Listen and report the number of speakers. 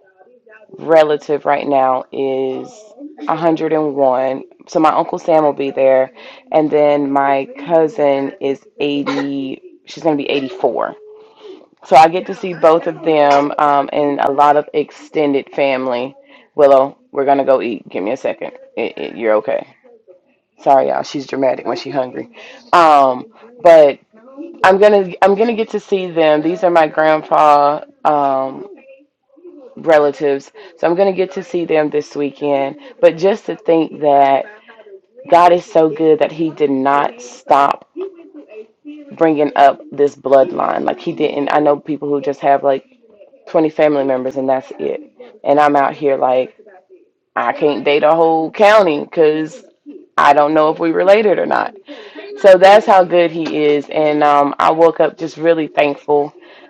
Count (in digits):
1